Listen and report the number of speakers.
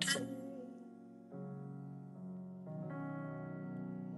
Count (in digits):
0